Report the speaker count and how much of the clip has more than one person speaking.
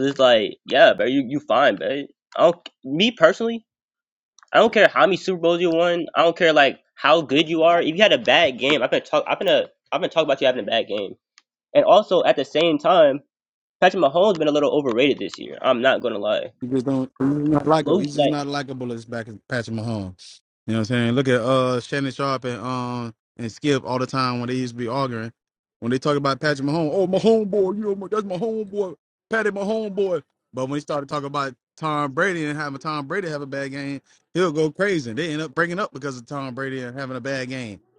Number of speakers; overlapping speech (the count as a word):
two, about 1%